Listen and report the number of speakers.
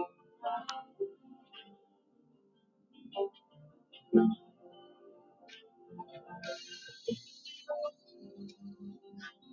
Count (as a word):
zero